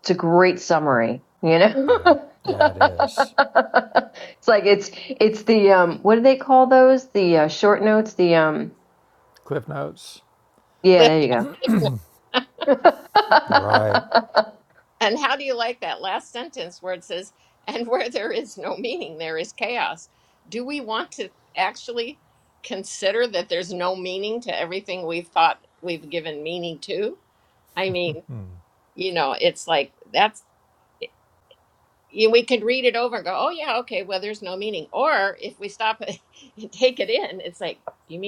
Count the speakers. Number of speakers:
3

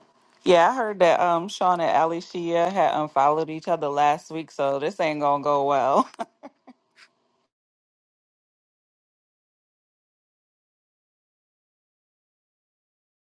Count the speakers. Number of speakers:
1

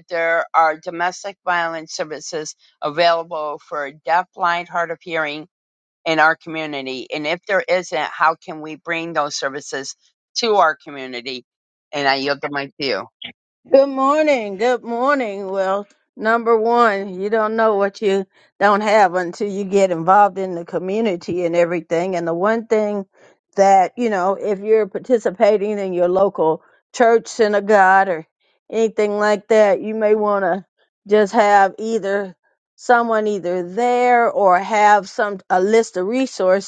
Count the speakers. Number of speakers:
2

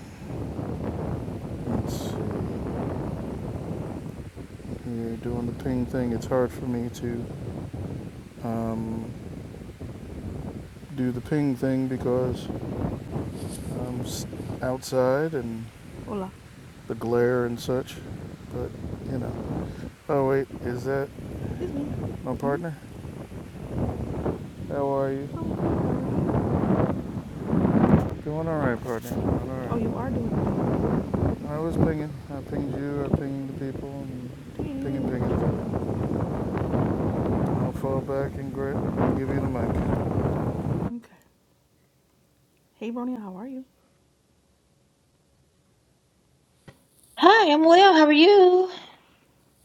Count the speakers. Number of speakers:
3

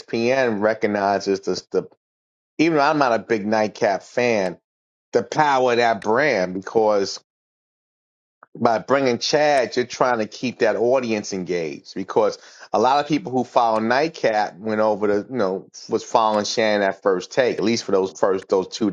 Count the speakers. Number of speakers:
1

